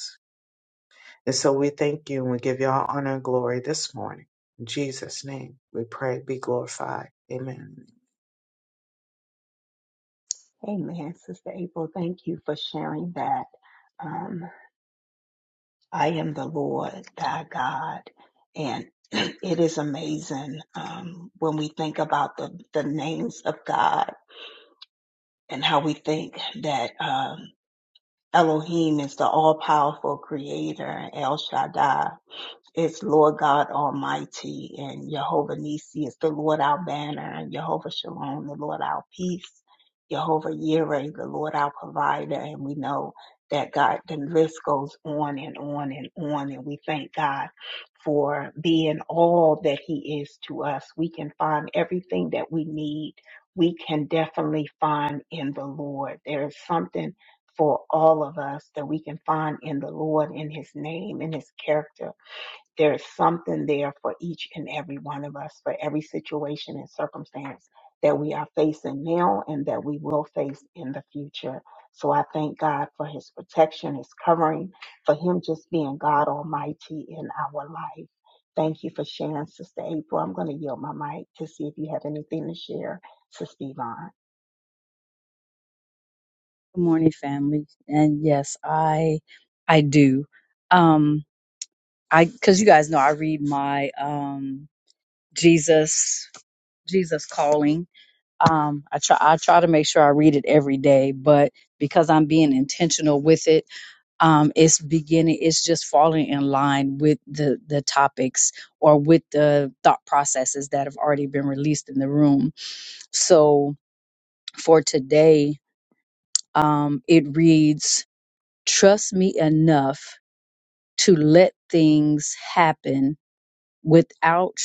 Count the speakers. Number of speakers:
three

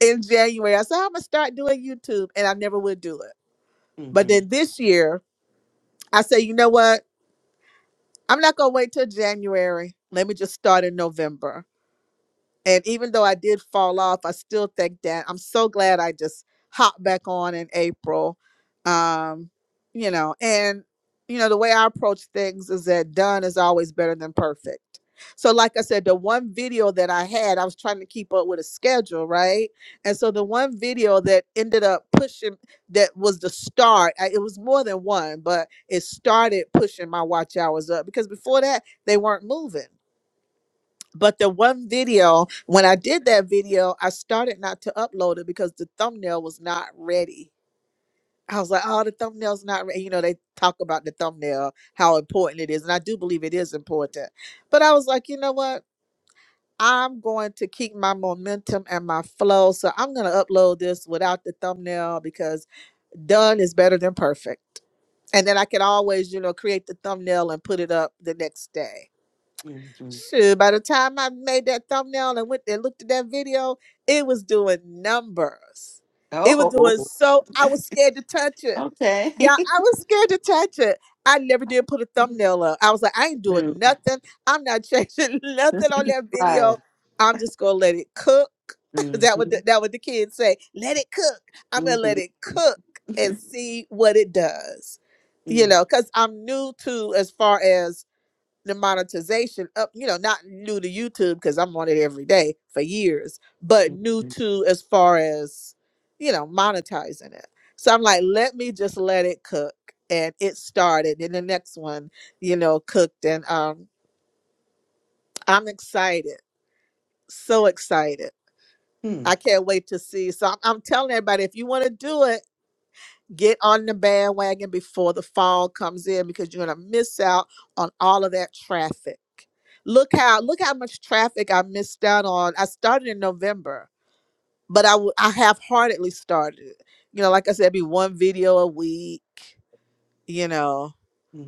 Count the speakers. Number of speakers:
two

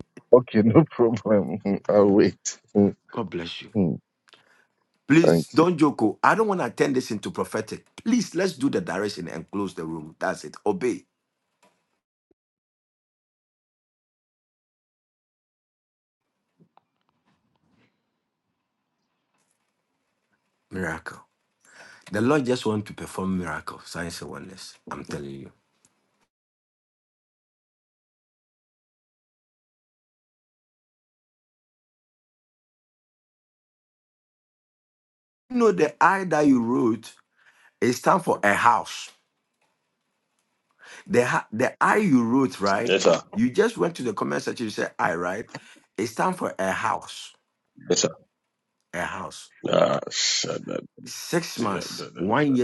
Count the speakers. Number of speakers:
three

